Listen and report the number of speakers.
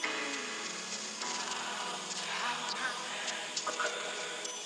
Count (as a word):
zero